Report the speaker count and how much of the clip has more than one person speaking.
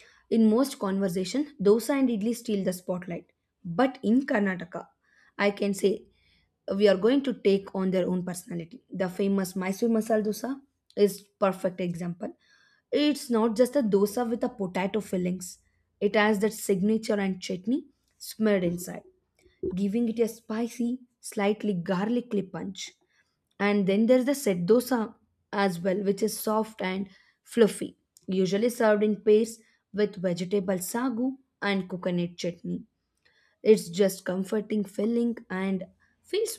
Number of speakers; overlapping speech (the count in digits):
1, no overlap